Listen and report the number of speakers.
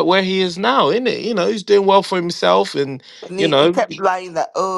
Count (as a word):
two